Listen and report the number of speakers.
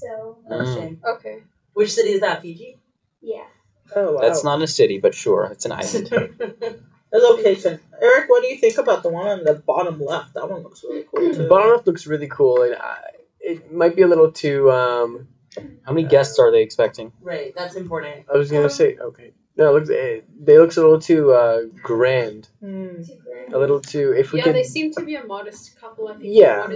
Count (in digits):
6